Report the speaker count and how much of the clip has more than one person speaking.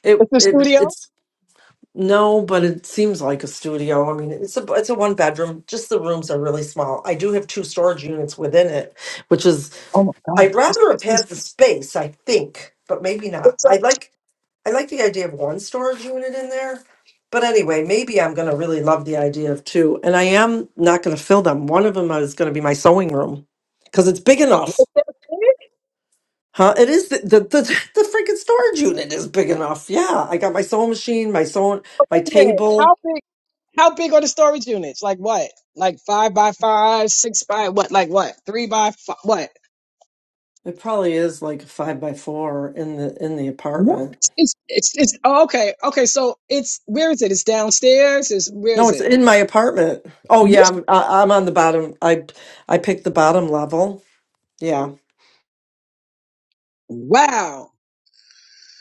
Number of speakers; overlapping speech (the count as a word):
two, about 5%